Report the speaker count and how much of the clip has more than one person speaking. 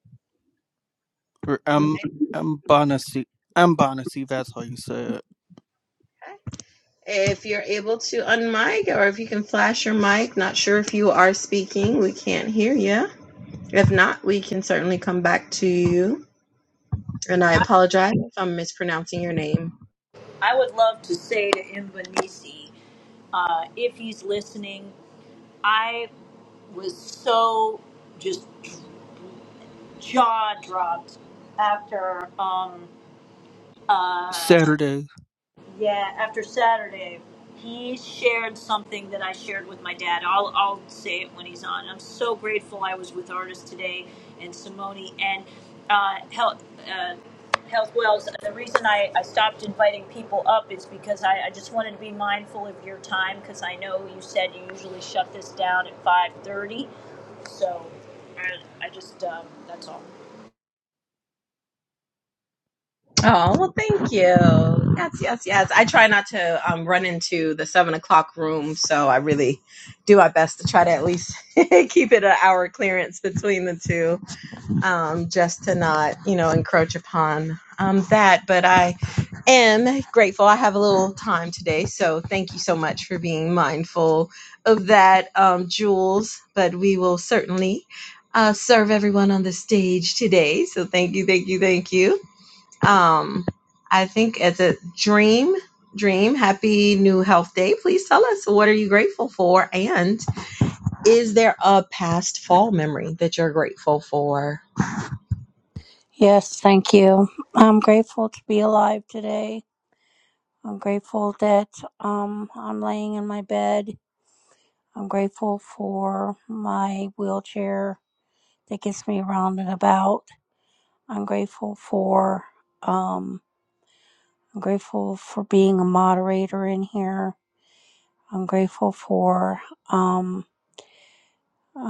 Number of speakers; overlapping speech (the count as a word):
four, under 1%